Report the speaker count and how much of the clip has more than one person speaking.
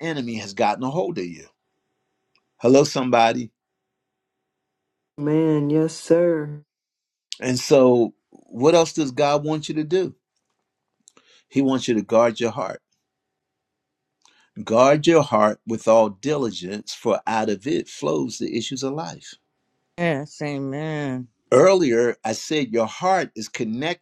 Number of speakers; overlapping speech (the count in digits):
3, no overlap